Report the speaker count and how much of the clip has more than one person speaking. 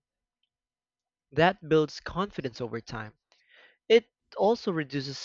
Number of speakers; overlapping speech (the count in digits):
1, no overlap